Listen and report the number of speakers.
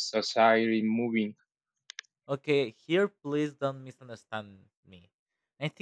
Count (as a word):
two